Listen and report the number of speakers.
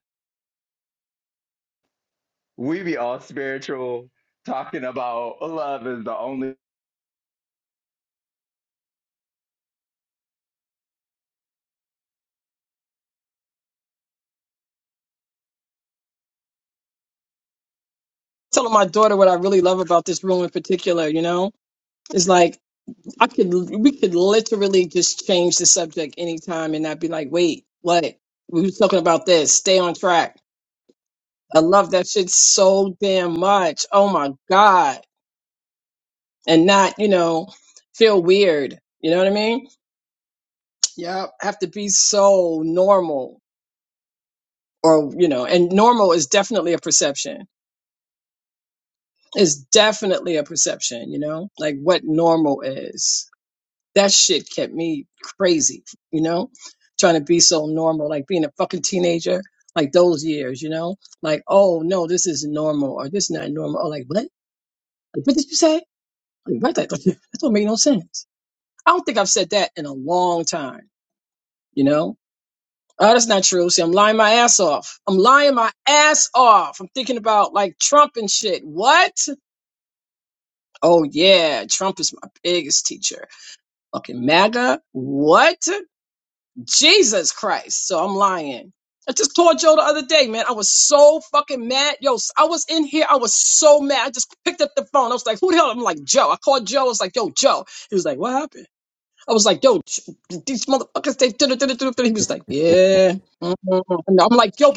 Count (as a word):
two